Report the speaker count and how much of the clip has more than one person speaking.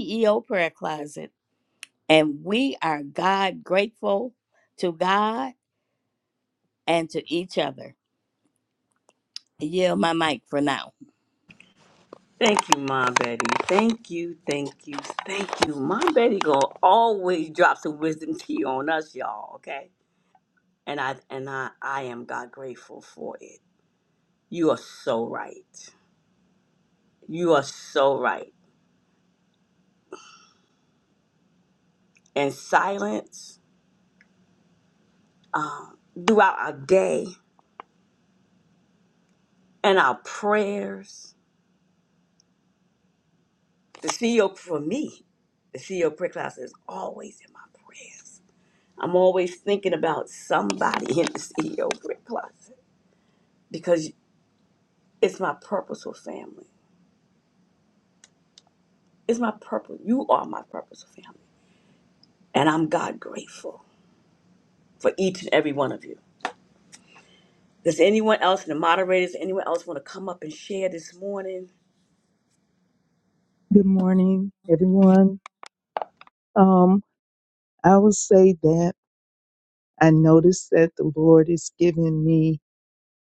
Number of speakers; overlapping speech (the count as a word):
three, no overlap